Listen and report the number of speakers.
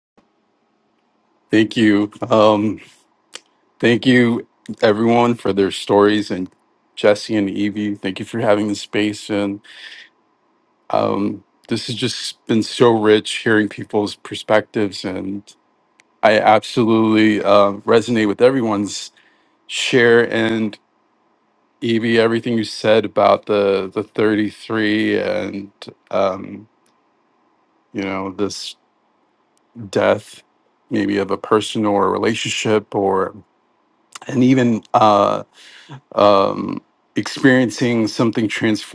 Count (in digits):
1